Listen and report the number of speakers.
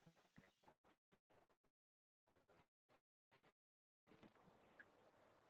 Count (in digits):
0